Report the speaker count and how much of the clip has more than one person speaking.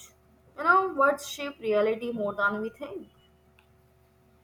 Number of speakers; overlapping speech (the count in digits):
1, no overlap